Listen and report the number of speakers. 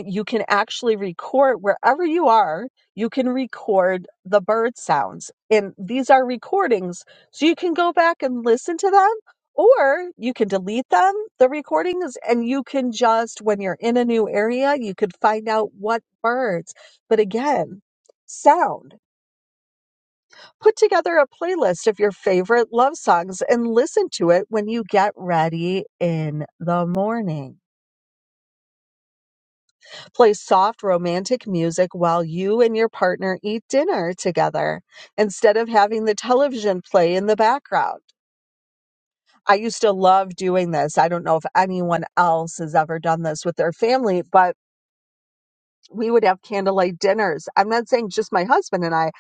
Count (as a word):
one